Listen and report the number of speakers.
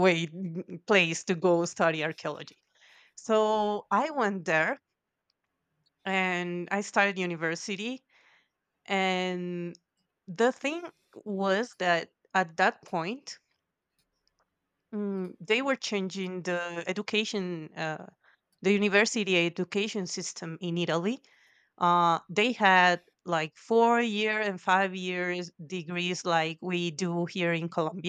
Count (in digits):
1